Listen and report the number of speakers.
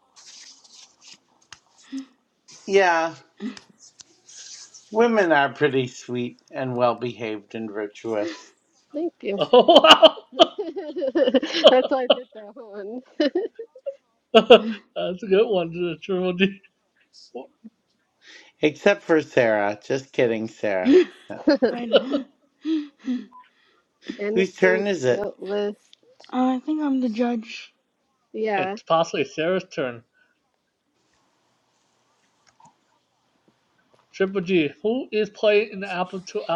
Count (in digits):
4